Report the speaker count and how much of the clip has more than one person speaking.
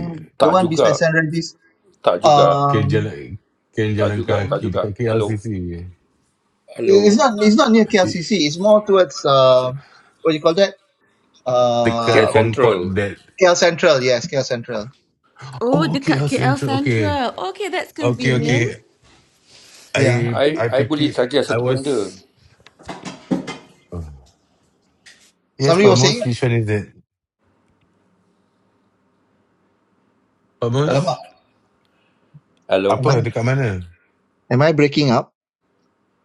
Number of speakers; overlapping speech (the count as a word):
four, about 25%